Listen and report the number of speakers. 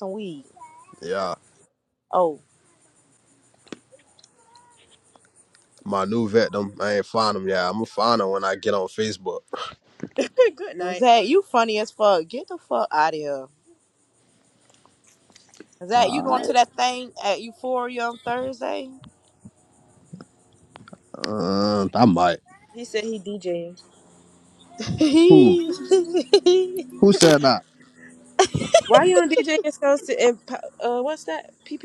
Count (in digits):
3